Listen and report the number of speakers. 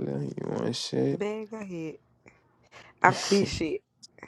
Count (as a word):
two